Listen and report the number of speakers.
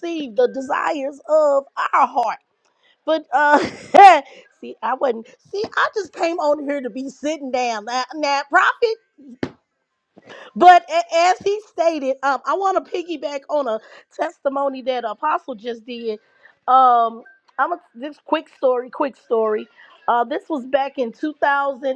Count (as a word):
one